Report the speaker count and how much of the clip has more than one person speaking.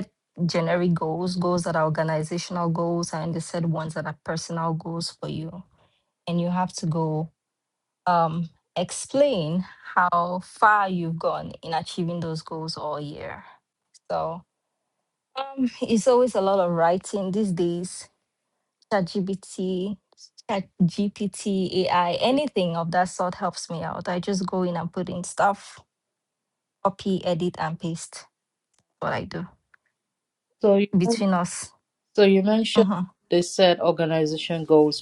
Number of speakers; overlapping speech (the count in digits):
2, under 1%